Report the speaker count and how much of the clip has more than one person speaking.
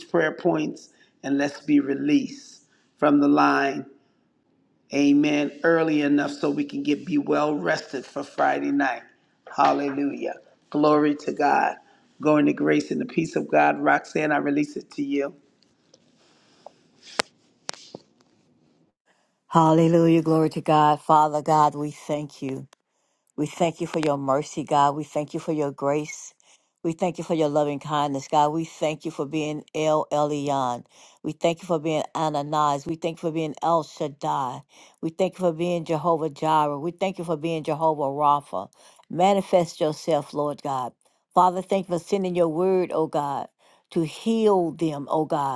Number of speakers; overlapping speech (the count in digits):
2, no overlap